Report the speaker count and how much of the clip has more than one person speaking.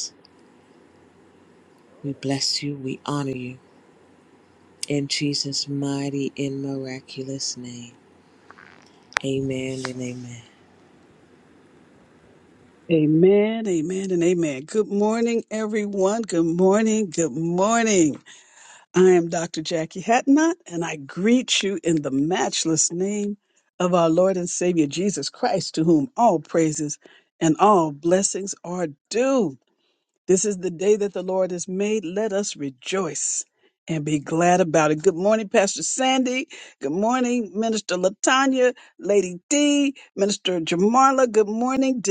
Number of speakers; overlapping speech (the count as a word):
two, no overlap